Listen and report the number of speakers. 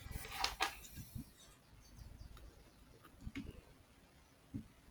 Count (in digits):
0